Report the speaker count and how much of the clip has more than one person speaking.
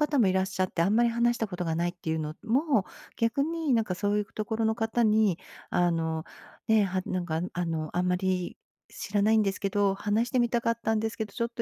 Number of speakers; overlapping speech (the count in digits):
1, no overlap